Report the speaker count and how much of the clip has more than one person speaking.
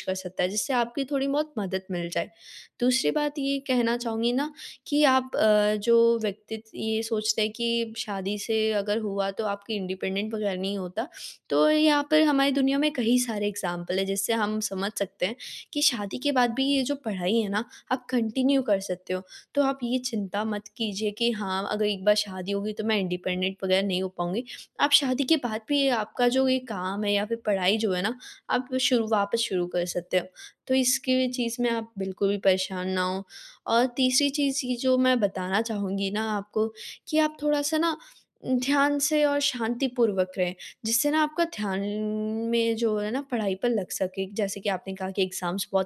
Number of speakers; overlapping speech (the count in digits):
1, no overlap